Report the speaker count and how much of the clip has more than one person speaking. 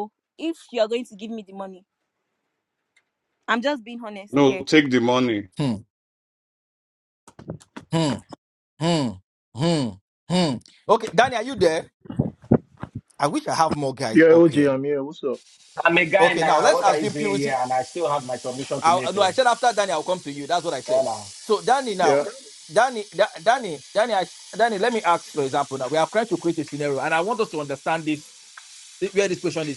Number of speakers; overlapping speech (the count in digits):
5, about 10%